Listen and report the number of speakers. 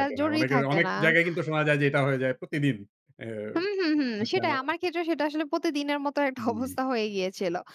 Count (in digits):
2